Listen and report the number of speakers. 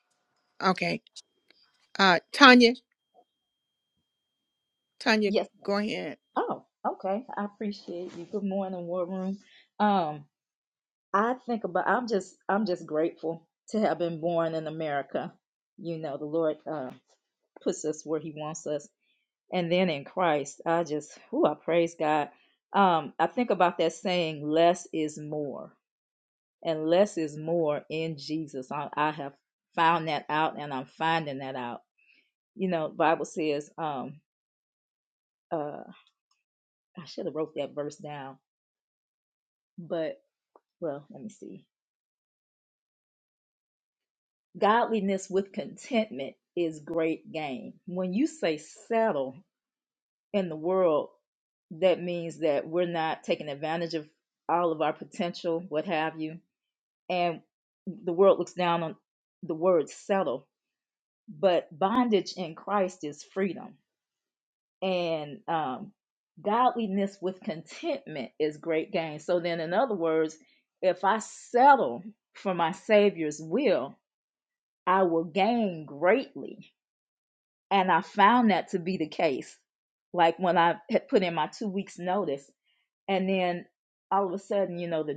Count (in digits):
2